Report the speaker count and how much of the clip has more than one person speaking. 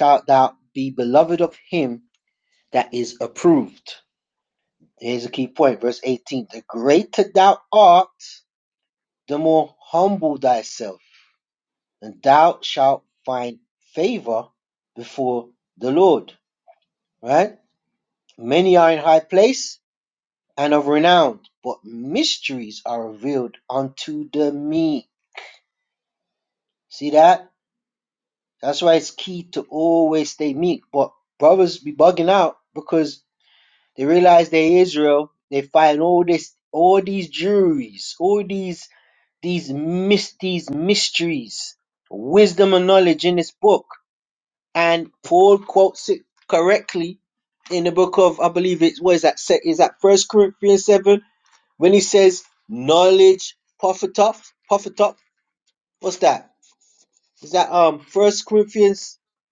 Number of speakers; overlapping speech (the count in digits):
1, no overlap